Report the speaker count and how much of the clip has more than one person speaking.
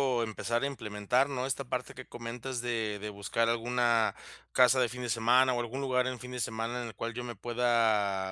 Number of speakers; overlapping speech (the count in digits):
1, no overlap